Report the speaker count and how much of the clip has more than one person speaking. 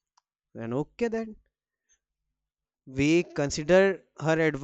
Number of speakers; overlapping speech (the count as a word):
one, no overlap